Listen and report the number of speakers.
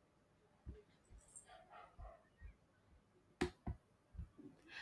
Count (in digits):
0